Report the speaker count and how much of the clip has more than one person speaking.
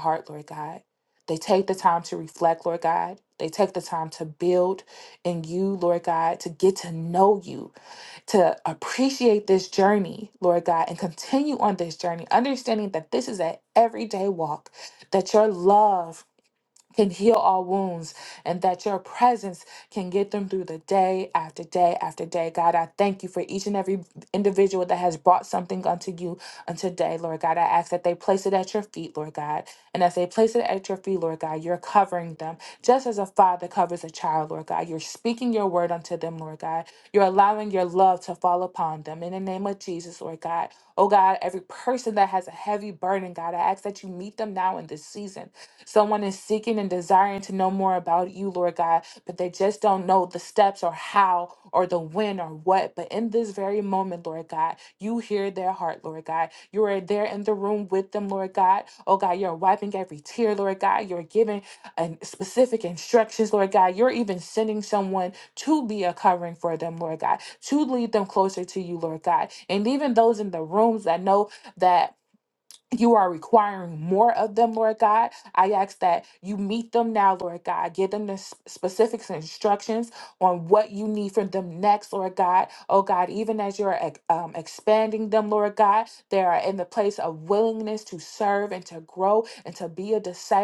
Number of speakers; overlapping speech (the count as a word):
one, no overlap